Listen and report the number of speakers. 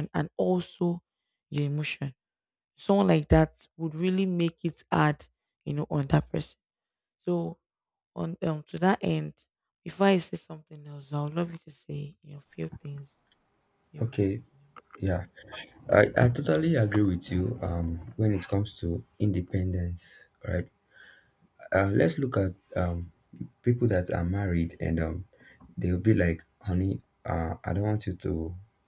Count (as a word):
two